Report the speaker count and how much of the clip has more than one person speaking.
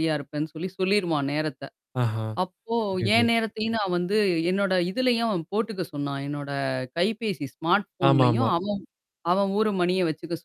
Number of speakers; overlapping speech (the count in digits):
2, about 7%